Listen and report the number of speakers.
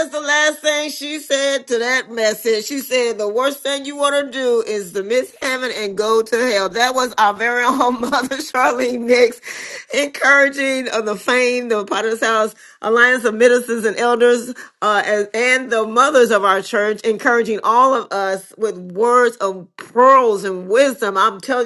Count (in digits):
1